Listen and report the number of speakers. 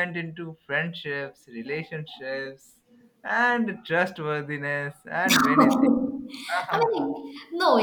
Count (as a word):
two